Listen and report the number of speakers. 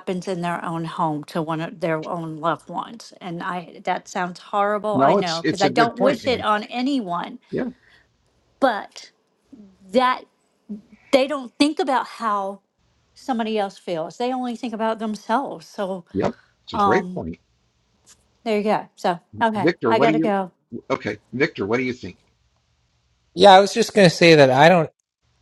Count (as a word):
three